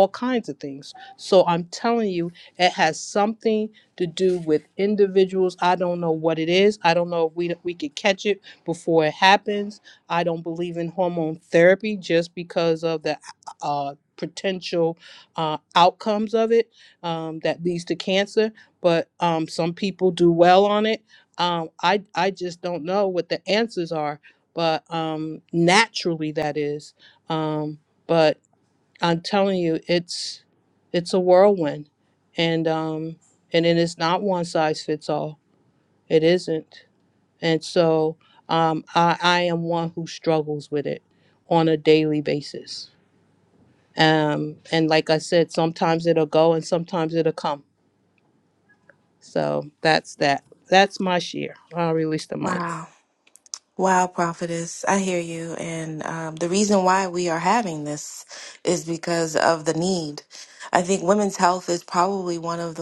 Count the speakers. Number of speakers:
2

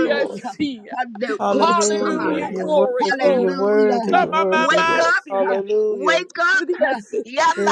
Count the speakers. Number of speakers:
3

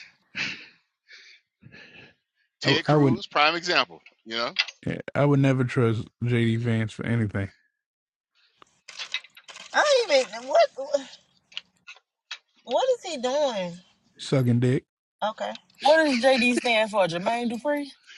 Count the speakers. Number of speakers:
4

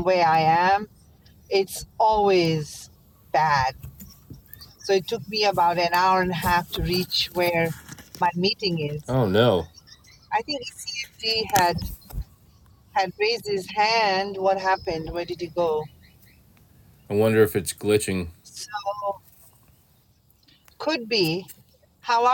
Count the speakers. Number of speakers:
2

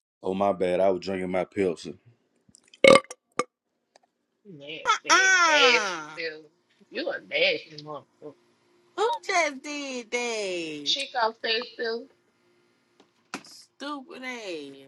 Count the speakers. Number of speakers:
3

